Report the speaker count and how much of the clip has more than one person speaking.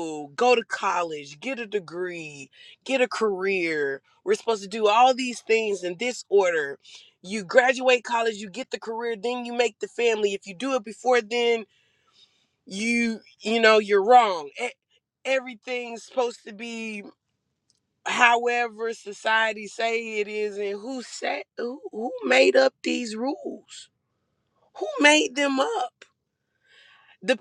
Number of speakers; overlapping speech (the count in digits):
1, no overlap